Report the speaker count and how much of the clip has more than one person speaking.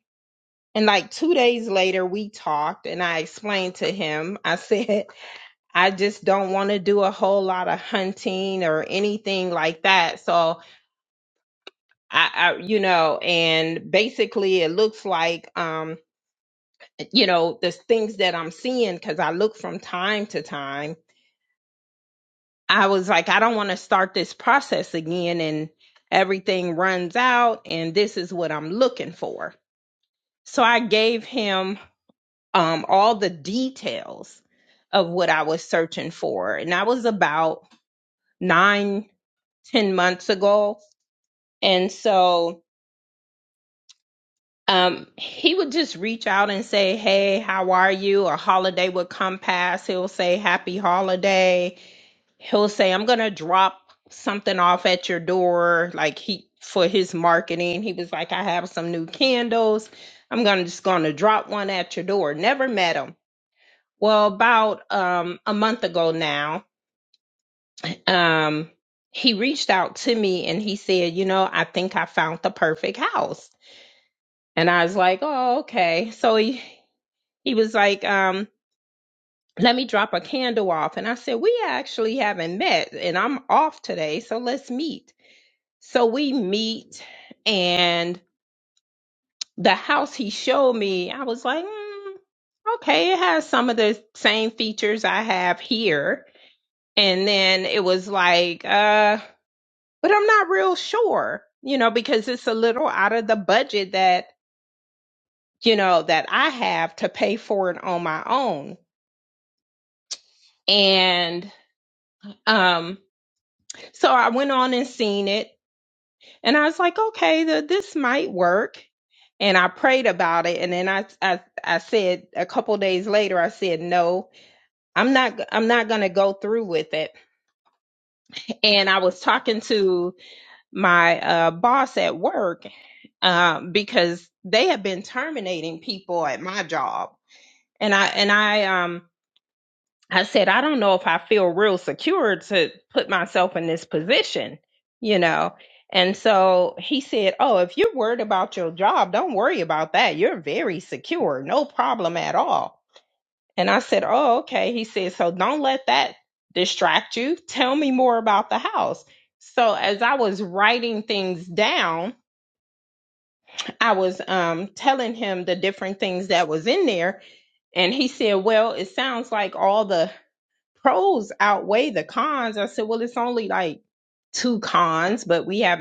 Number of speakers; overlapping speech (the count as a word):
one, no overlap